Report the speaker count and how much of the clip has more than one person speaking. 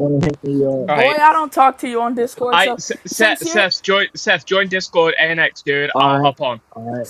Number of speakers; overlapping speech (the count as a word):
three, about 21%